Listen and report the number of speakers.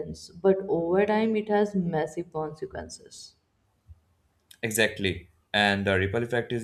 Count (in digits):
2